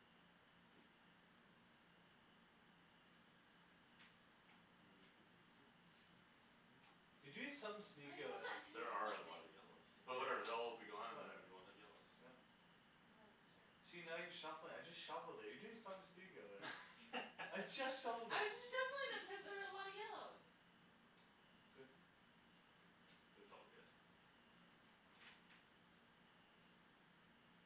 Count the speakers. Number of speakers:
3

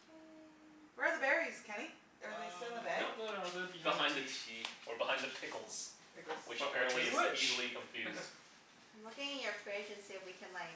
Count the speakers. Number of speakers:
4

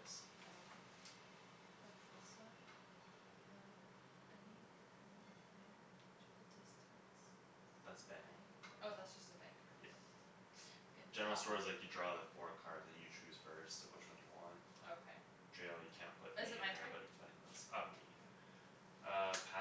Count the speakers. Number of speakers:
2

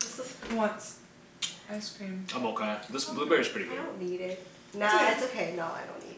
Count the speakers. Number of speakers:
3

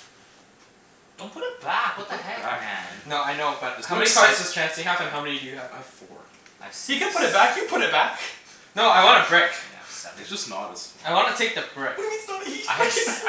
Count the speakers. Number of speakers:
4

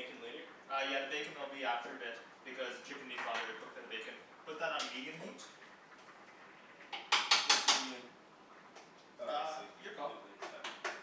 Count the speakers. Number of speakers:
2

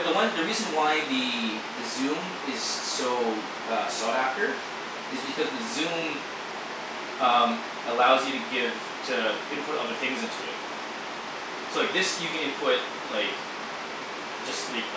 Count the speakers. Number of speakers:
1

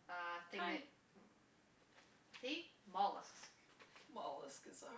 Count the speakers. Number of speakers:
2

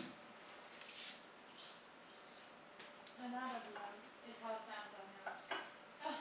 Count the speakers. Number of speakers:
1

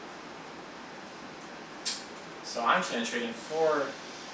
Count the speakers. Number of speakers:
1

